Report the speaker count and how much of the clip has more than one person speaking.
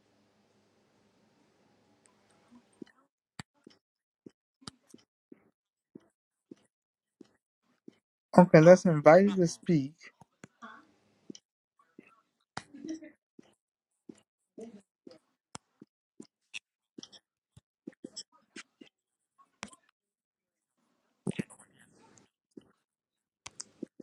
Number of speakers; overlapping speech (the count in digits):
1, no overlap